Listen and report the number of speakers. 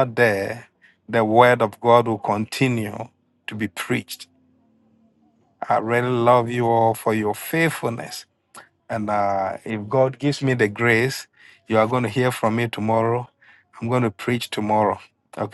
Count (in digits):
1